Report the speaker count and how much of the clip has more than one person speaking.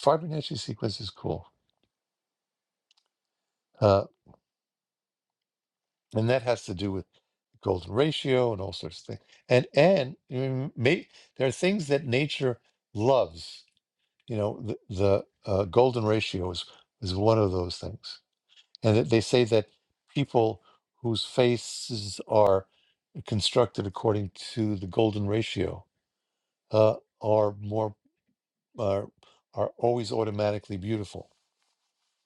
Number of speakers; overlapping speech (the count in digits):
1, no overlap